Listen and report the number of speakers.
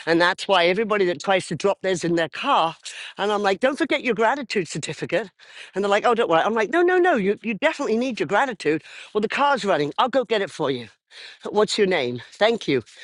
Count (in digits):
1